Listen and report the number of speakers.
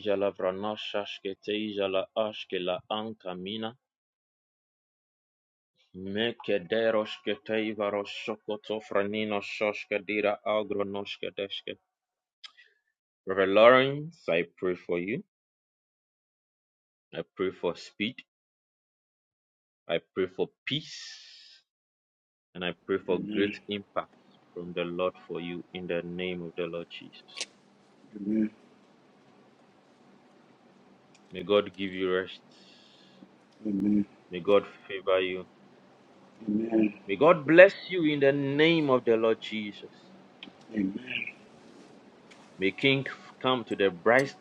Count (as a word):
two